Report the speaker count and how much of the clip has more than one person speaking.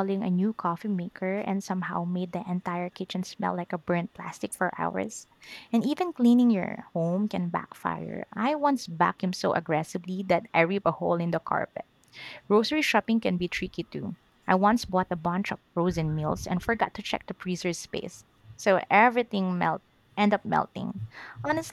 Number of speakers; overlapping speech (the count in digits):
1, no overlap